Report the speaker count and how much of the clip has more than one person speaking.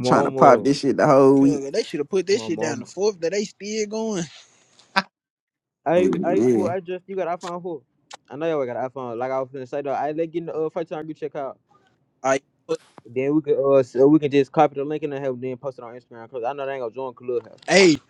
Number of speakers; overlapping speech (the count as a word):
three, about 12%